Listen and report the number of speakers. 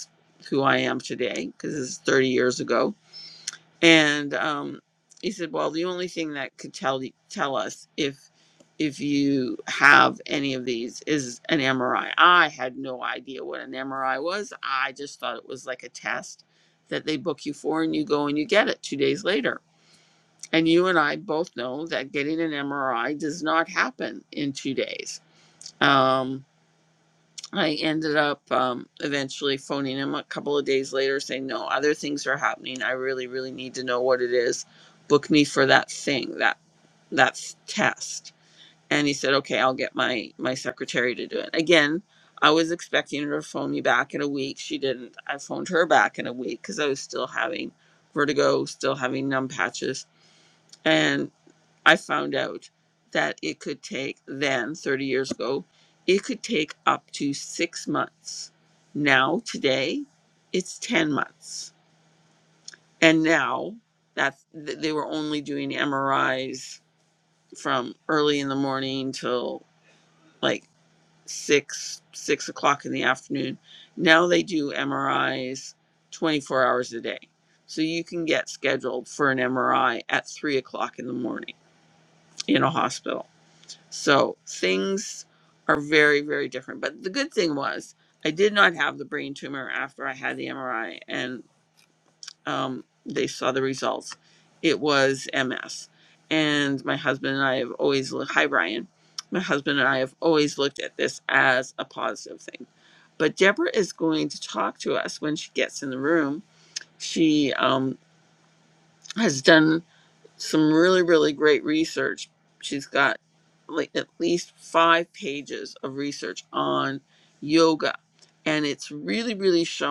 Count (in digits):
1